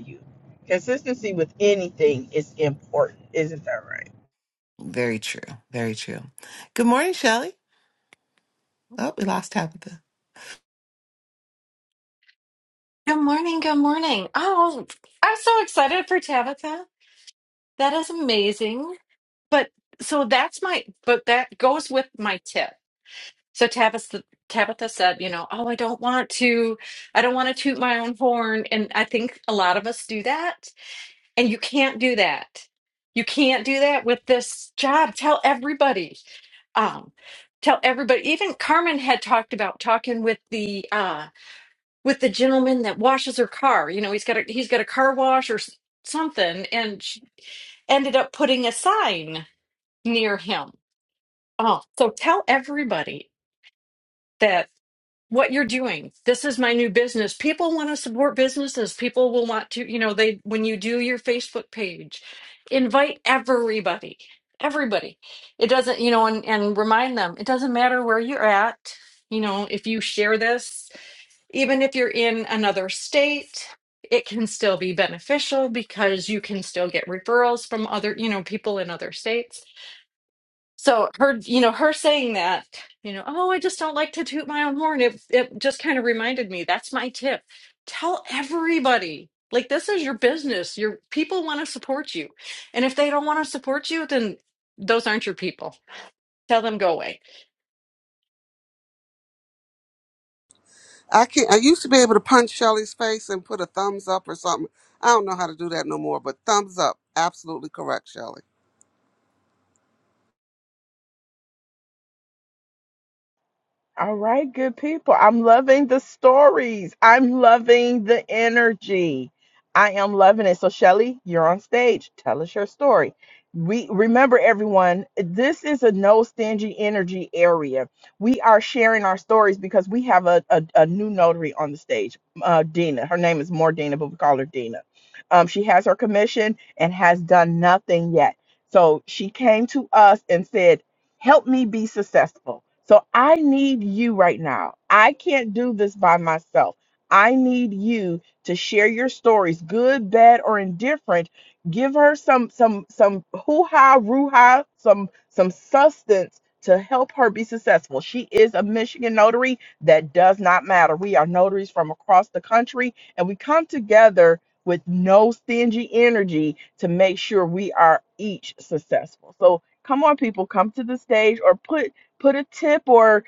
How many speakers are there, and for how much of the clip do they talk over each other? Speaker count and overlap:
4, no overlap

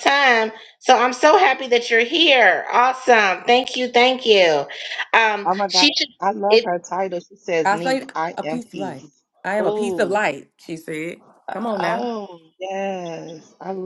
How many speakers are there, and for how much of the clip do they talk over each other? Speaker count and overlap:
3, about 20%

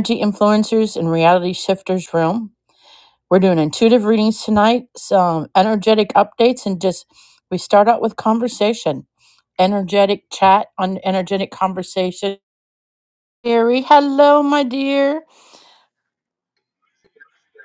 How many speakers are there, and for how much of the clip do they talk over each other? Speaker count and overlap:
1, no overlap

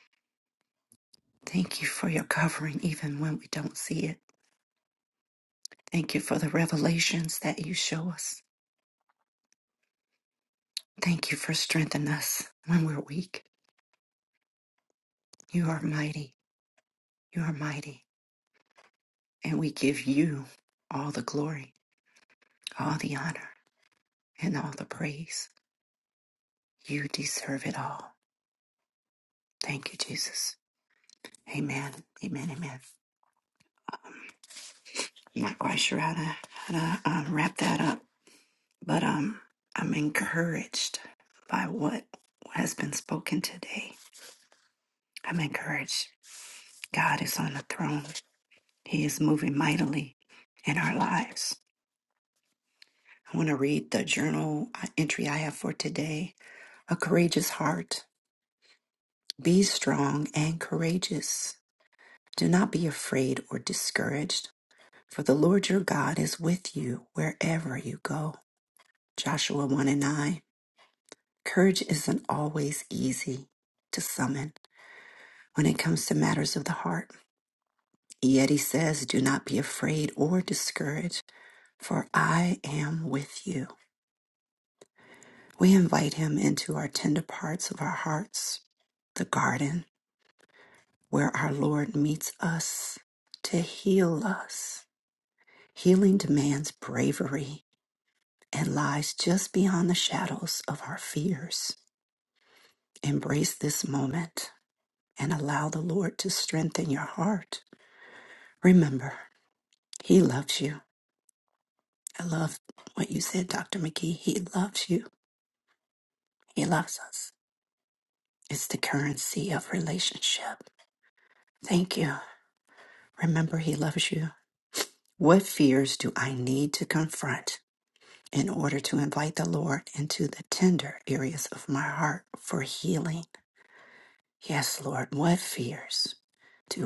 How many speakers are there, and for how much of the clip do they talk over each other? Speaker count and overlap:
1, no overlap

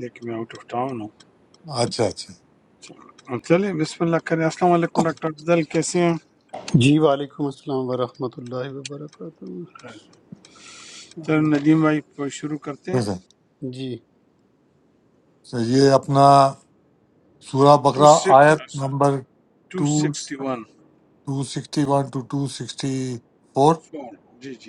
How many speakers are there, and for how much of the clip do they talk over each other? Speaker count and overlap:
3, about 7%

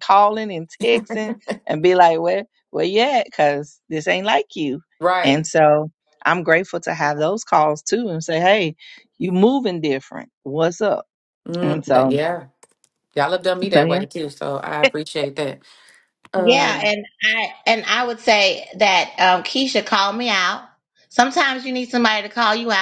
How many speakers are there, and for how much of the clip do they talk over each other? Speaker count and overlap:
3, about 7%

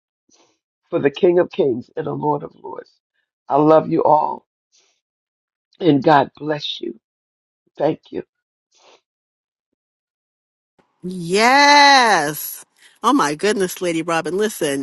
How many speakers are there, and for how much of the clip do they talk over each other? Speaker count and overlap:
2, no overlap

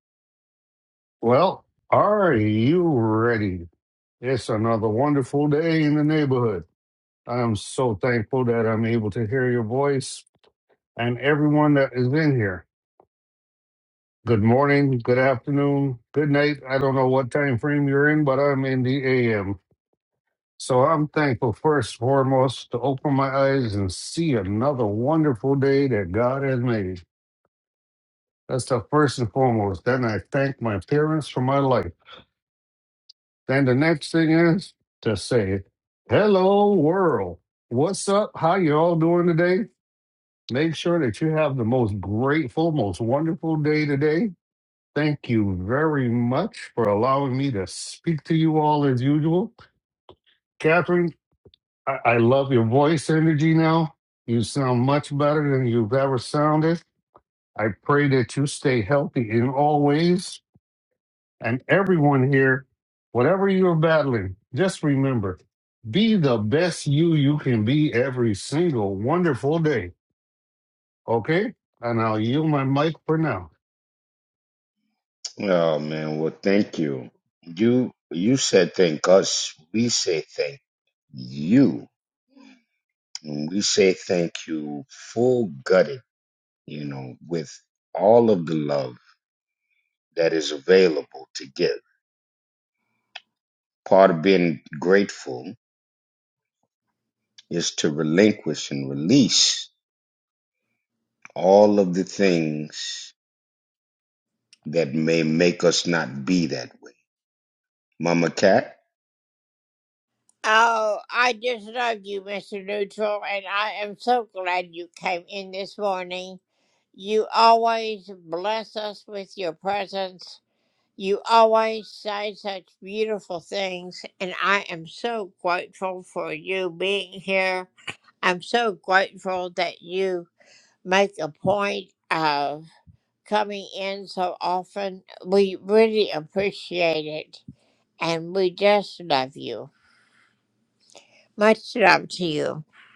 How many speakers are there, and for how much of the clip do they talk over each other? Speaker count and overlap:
3, no overlap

